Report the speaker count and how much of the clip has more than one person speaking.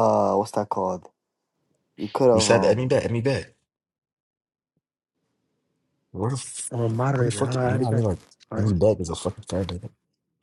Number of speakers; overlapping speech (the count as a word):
three, about 14%